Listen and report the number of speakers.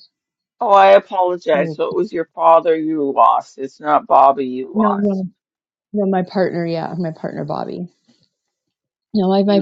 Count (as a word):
two